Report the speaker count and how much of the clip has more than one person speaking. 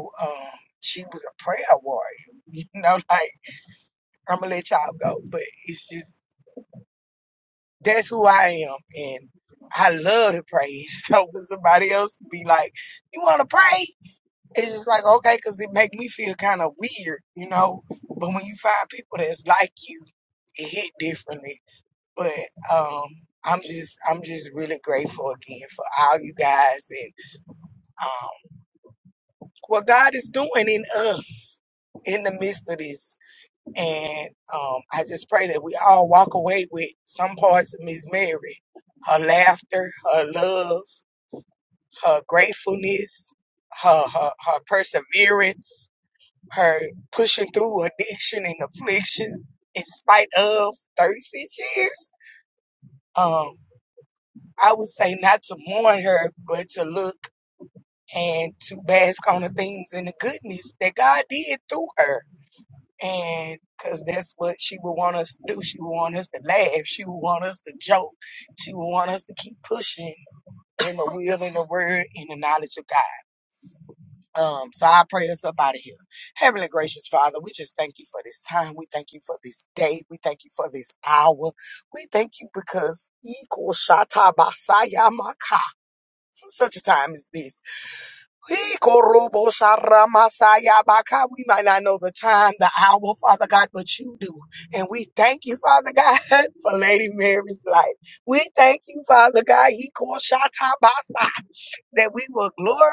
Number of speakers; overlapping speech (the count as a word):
one, no overlap